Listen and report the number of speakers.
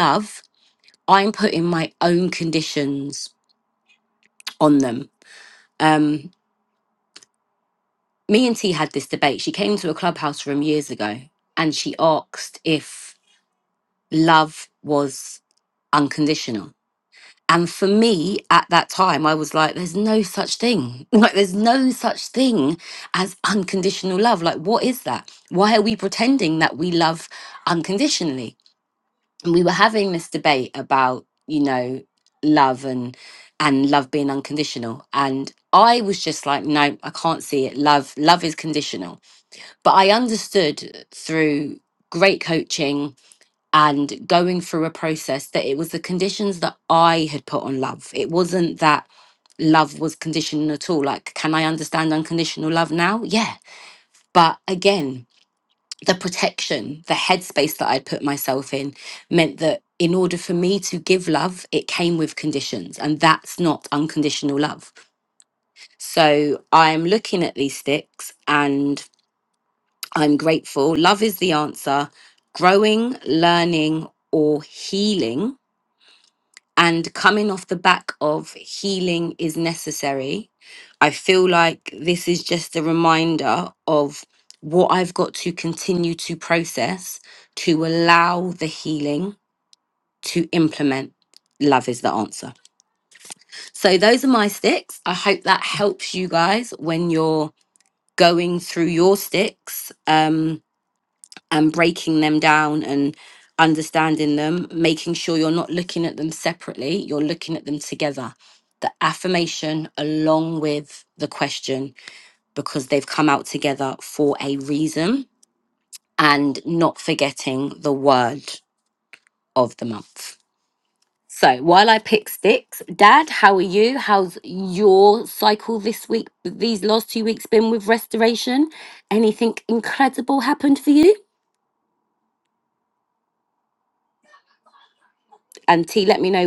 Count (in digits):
1